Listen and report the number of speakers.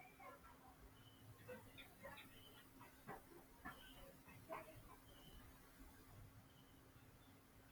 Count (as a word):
zero